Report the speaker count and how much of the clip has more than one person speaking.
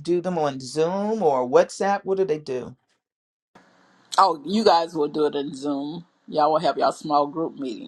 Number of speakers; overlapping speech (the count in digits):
2, no overlap